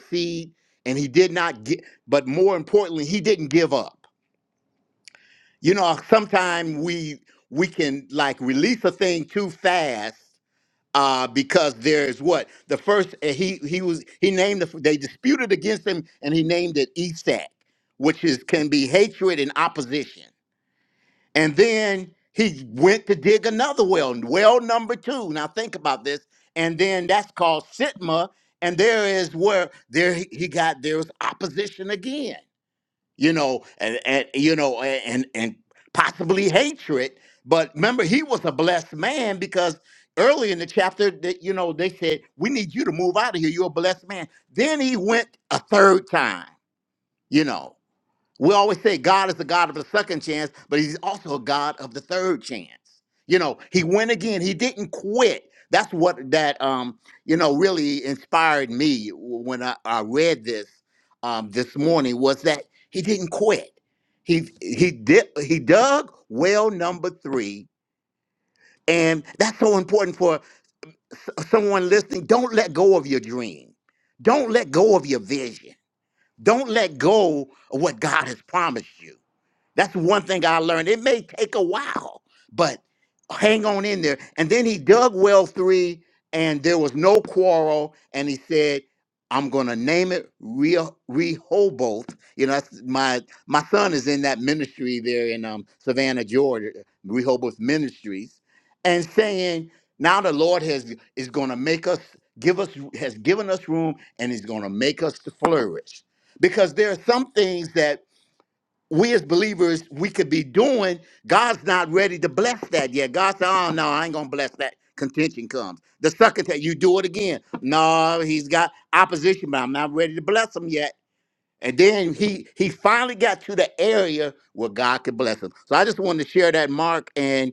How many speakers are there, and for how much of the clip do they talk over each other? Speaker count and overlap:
1, no overlap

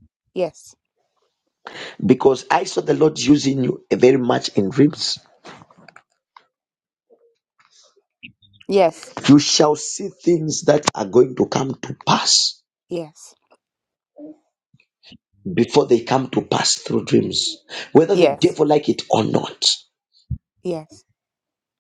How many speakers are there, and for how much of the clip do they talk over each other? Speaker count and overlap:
2, about 1%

